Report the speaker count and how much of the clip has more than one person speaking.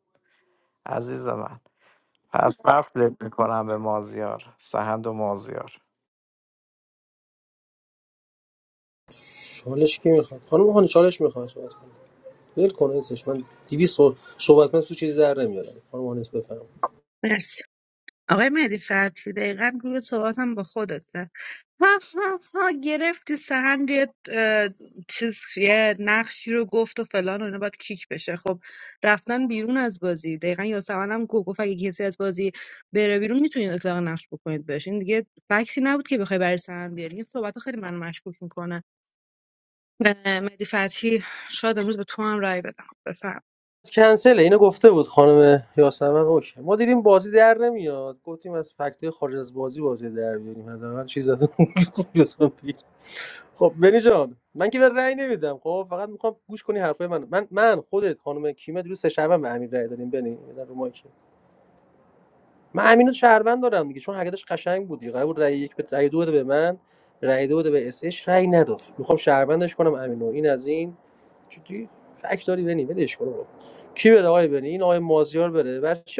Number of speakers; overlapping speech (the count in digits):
3, no overlap